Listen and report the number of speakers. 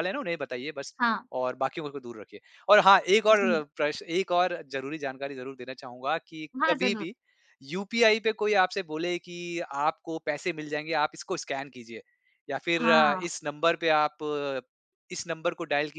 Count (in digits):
2